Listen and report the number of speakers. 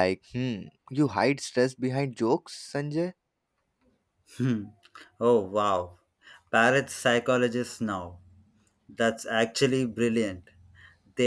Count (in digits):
2